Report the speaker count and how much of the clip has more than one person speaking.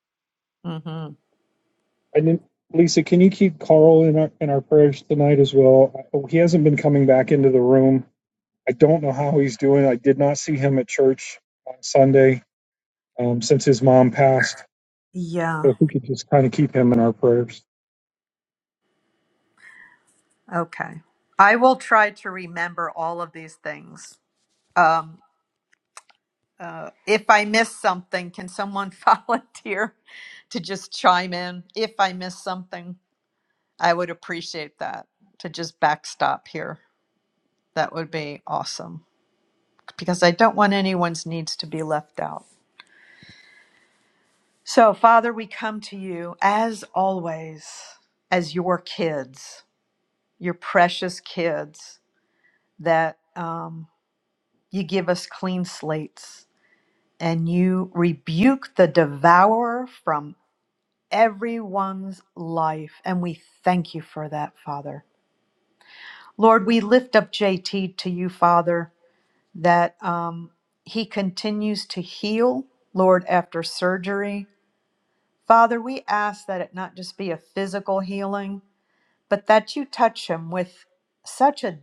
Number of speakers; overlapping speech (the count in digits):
2, under 1%